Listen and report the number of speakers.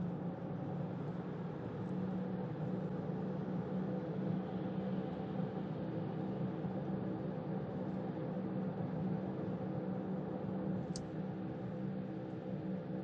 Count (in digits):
0